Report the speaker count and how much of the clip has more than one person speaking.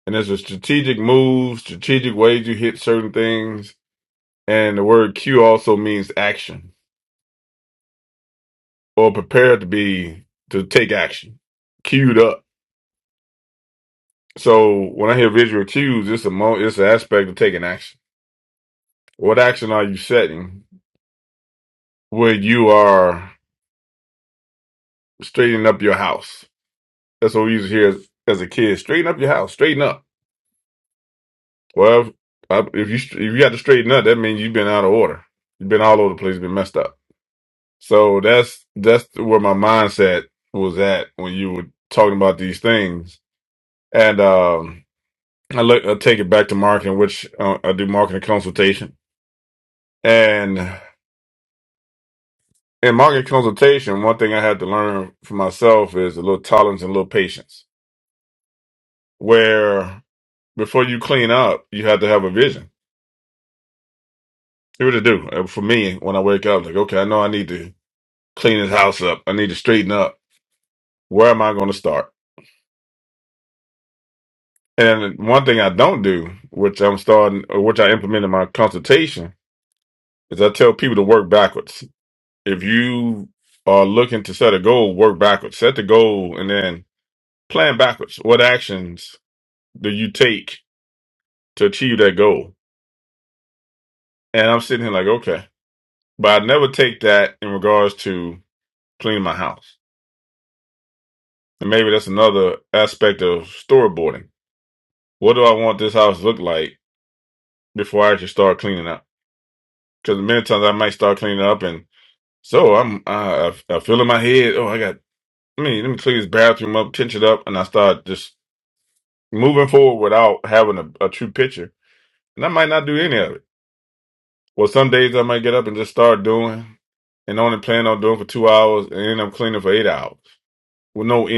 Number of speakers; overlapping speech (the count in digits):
1, no overlap